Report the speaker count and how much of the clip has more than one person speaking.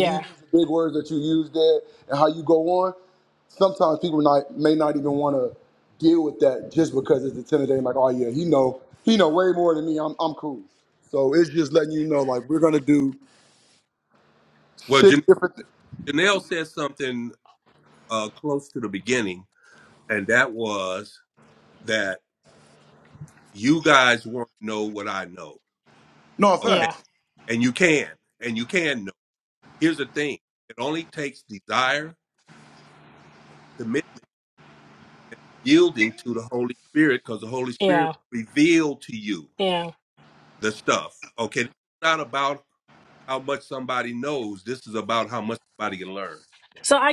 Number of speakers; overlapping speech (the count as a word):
three, about 3%